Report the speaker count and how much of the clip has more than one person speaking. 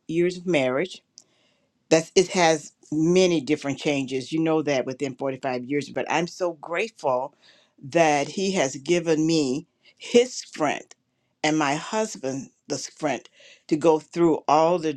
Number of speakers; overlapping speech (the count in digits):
1, no overlap